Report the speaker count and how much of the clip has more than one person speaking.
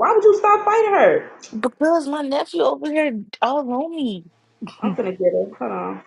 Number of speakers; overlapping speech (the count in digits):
2, no overlap